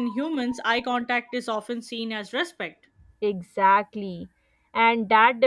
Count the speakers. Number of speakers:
2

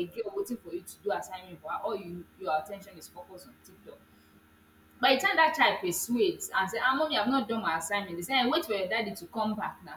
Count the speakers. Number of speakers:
1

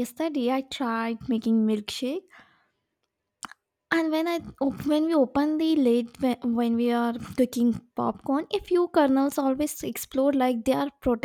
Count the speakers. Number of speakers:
1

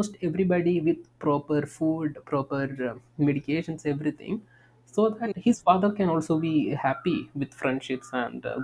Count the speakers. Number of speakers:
1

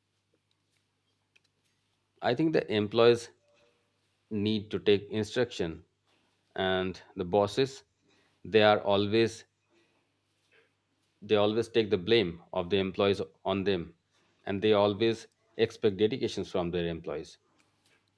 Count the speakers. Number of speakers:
1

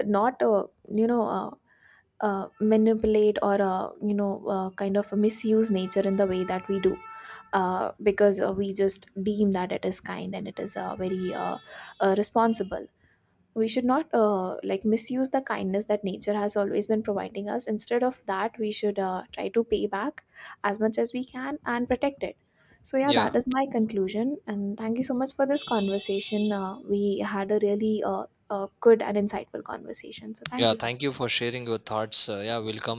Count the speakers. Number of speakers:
2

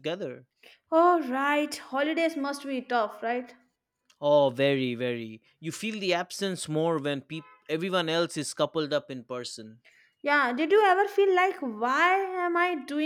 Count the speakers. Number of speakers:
2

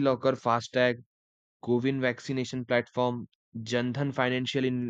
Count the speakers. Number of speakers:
1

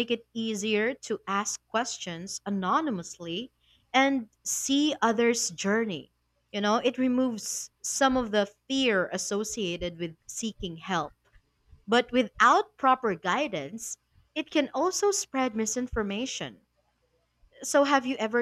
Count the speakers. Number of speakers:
1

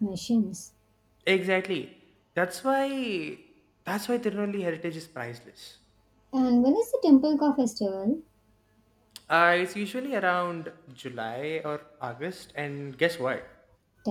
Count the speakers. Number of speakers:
2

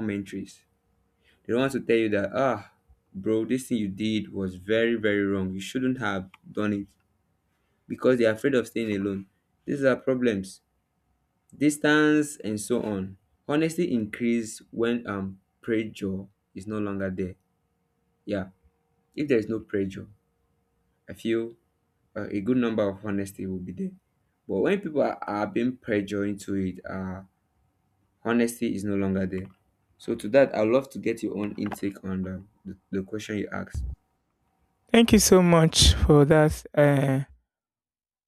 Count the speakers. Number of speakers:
2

